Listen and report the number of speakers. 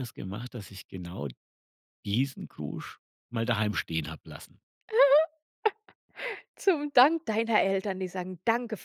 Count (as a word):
two